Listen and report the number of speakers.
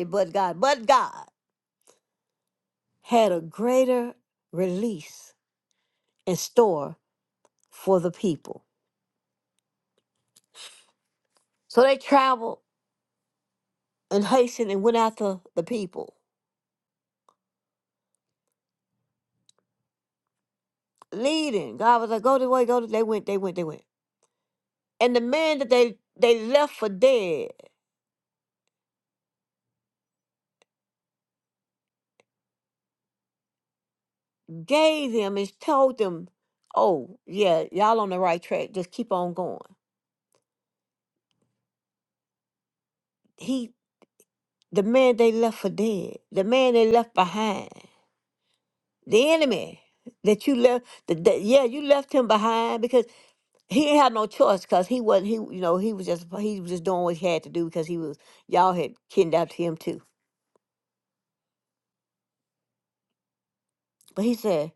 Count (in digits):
1